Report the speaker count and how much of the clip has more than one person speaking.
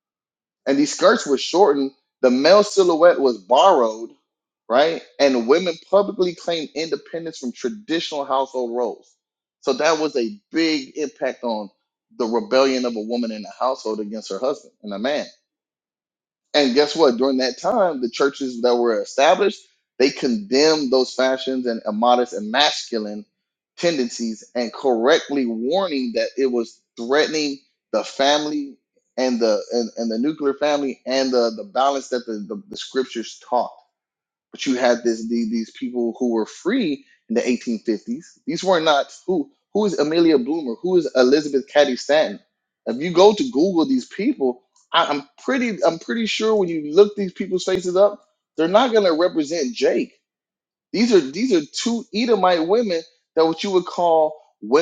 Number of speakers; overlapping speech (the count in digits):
1, no overlap